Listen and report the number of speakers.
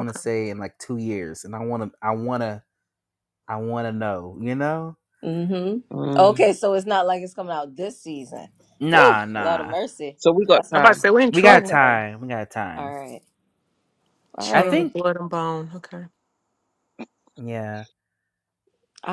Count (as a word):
four